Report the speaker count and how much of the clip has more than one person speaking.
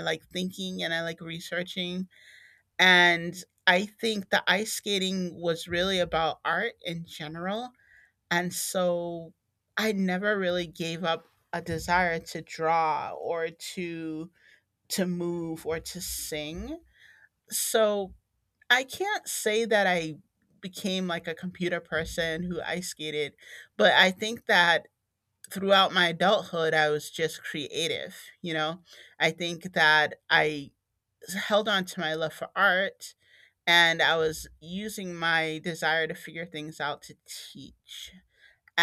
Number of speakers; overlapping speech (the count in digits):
1, no overlap